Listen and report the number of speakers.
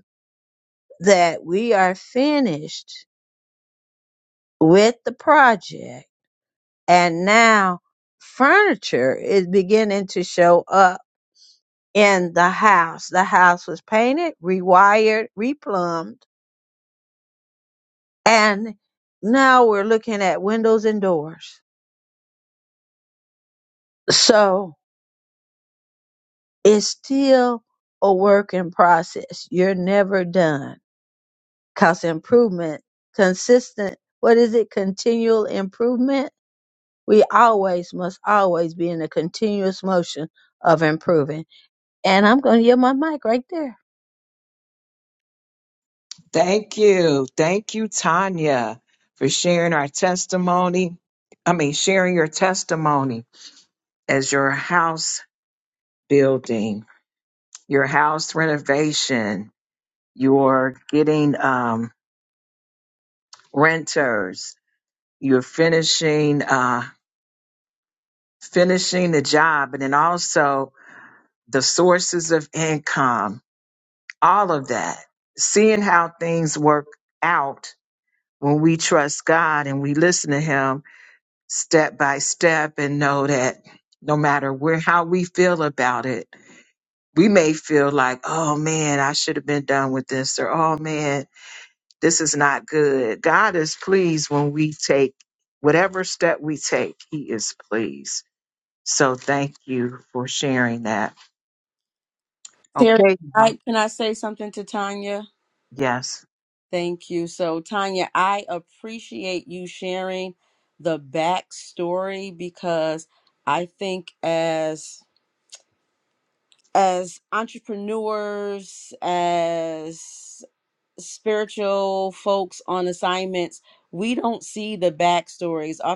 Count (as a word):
three